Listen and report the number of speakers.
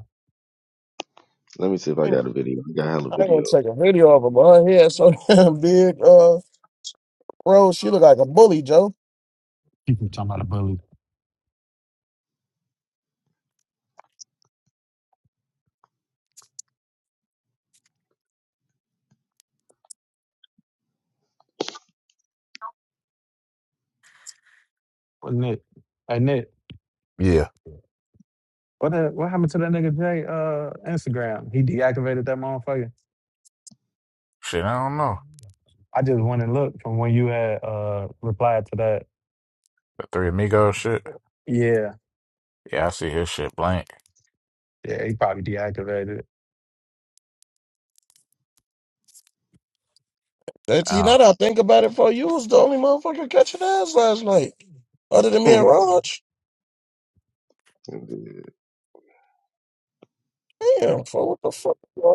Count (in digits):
4